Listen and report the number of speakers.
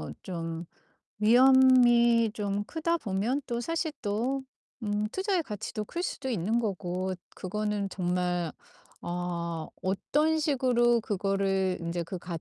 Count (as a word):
one